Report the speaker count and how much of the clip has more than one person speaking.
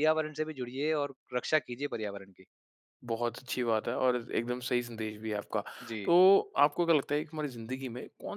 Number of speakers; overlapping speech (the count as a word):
two, about 1%